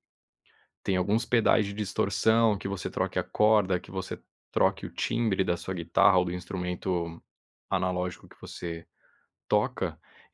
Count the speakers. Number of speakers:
one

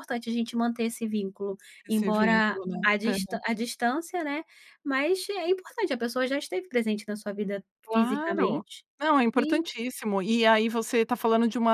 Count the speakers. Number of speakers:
two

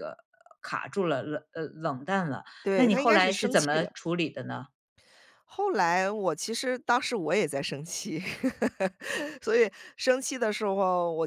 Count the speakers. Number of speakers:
two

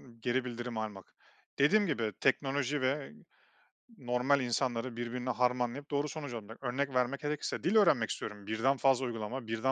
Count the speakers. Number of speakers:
one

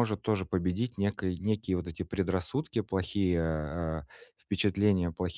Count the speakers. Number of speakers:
one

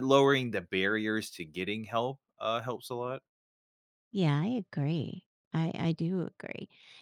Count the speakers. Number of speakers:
two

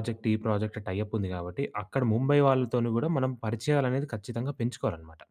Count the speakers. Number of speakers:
one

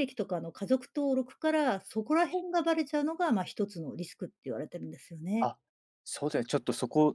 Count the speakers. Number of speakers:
two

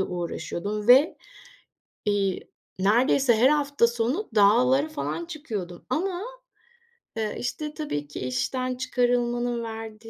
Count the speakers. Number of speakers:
one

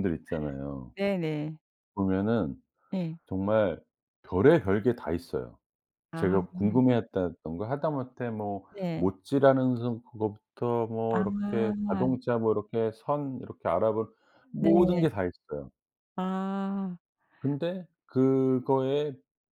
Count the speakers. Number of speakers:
two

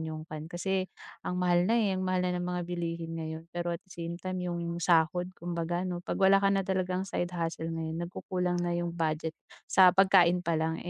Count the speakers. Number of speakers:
one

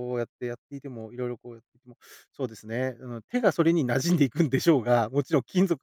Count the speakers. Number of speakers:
one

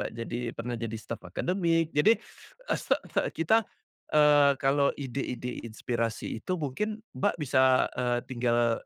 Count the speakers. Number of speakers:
one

